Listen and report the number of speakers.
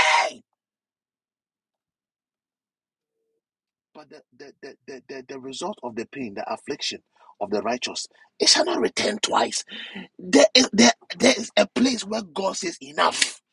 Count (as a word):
one